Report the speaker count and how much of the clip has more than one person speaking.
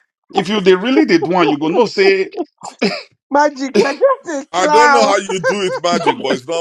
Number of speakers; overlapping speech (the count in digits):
3, about 10%